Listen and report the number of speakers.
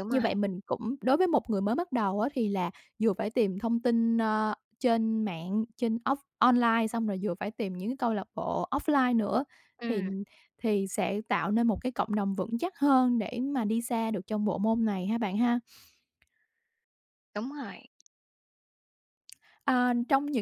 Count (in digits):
2